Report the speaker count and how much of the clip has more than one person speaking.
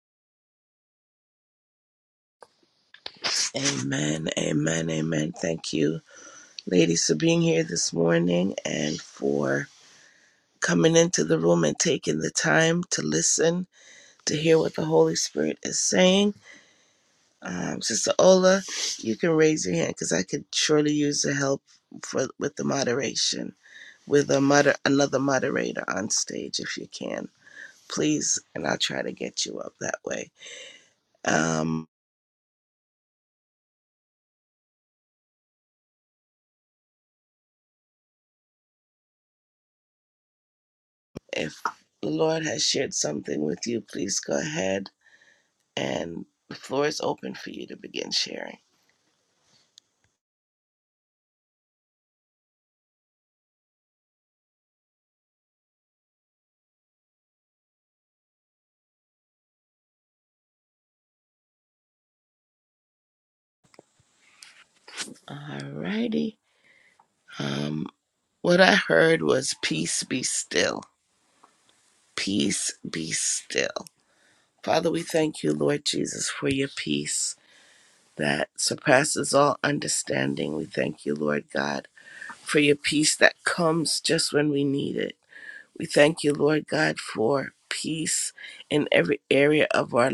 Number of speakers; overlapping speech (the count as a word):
one, no overlap